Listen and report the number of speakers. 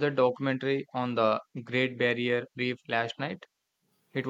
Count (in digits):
1